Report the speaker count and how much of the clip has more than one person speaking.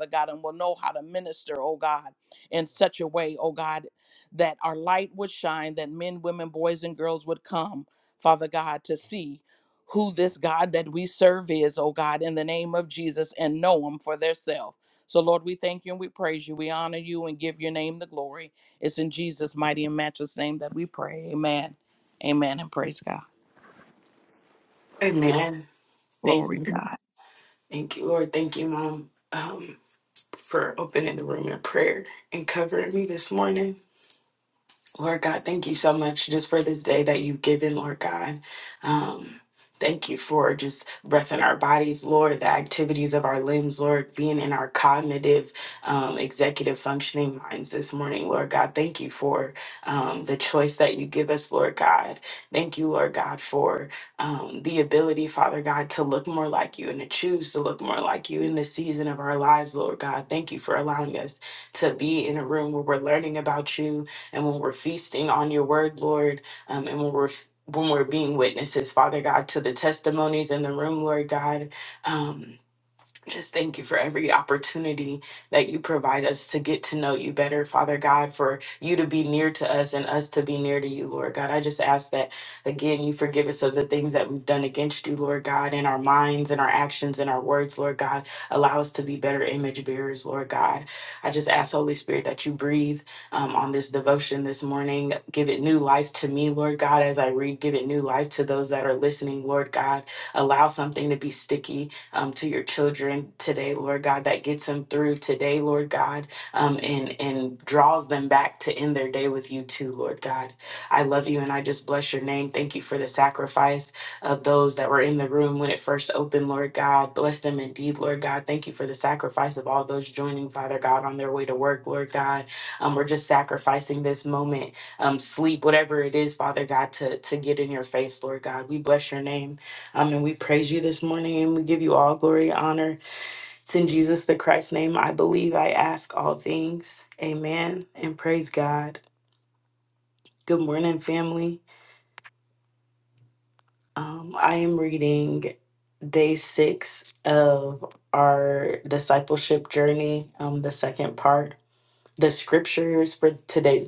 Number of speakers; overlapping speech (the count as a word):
two, under 1%